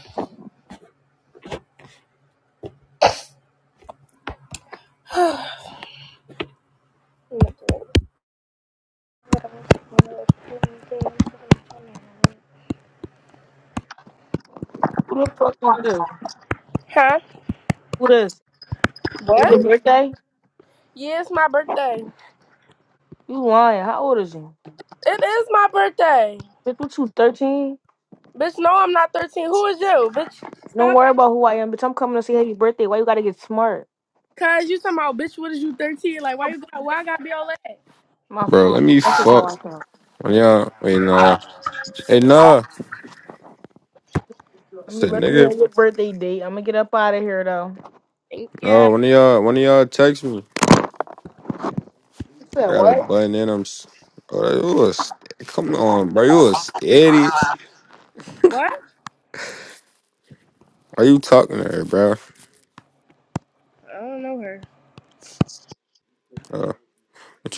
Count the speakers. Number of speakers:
3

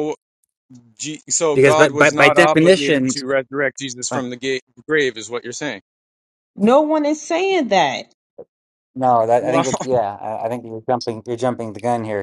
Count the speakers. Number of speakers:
3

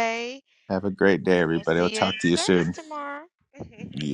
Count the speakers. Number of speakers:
2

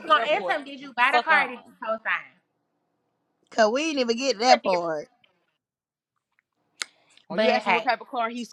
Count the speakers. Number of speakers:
3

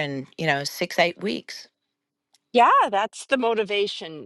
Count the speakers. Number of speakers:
2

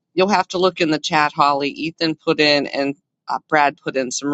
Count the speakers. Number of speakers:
1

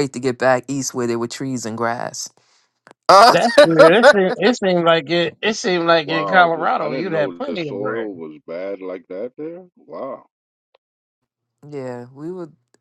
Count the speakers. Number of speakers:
3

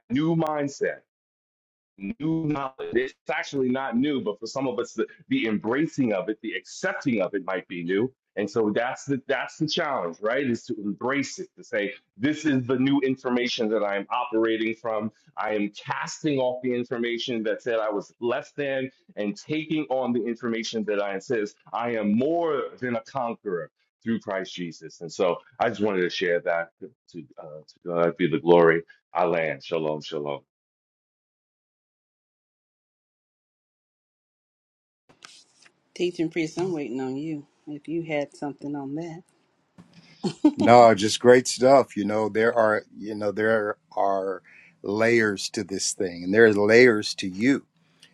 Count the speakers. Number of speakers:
3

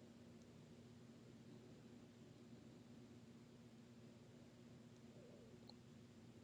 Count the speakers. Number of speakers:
0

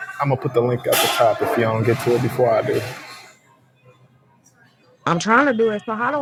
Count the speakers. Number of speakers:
2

